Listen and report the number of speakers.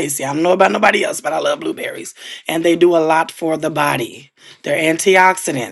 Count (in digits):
1